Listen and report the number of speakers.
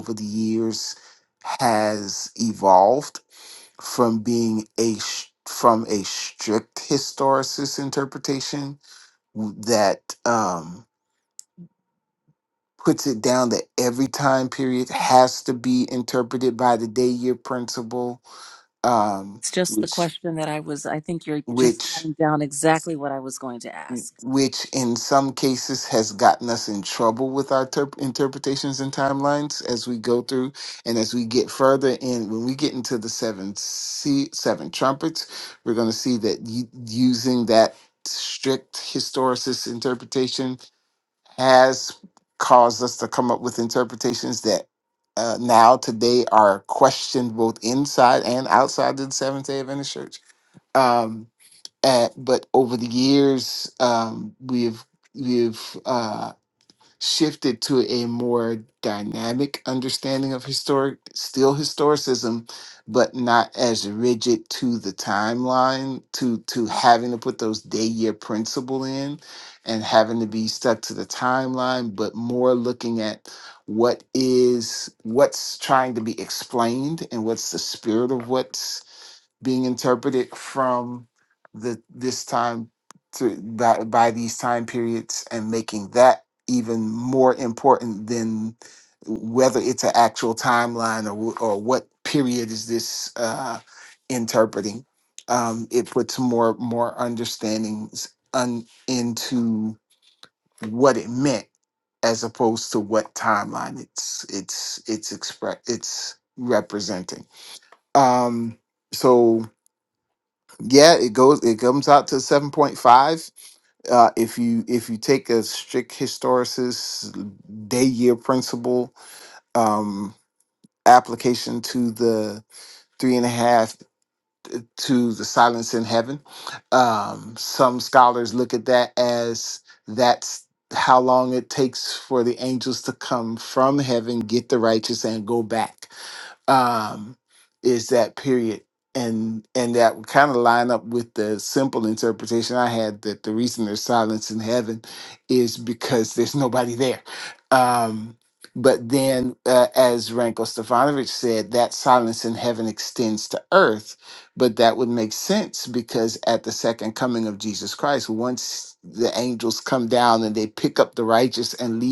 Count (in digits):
2